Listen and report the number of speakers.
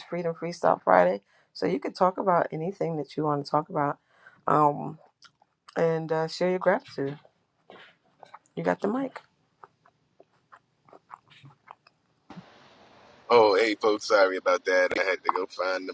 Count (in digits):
2